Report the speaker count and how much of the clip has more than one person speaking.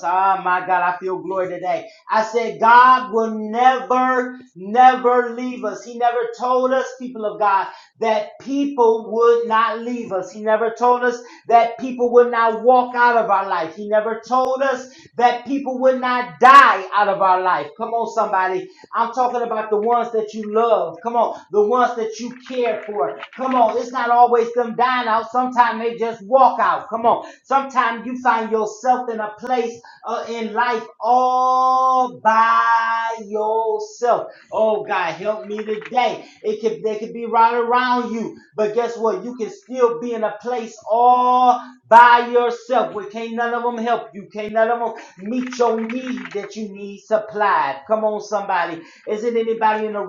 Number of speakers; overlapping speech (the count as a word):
one, no overlap